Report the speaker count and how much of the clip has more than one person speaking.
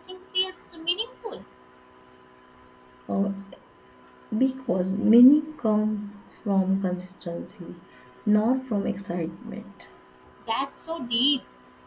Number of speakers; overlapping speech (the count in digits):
2, no overlap